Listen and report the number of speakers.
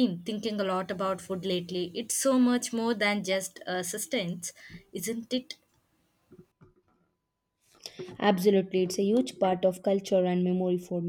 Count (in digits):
2